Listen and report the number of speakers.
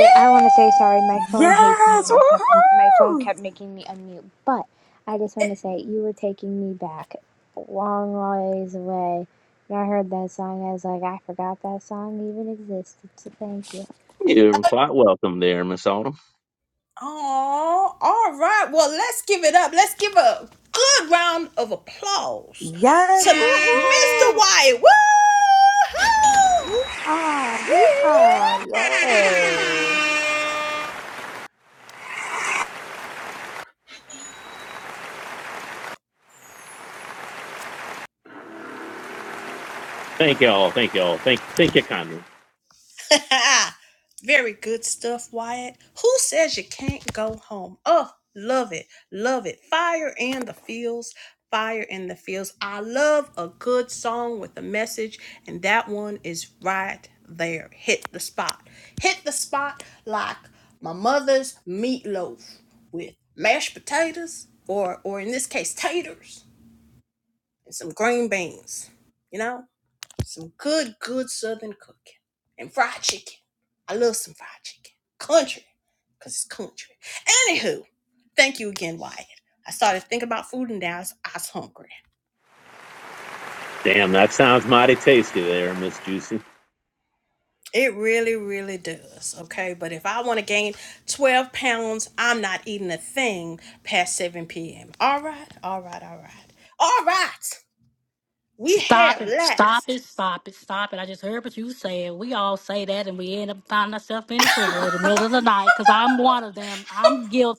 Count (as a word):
five